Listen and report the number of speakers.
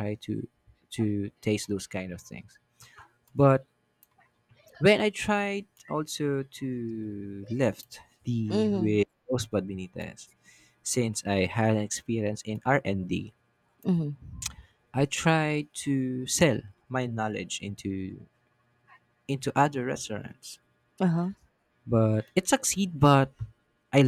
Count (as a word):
two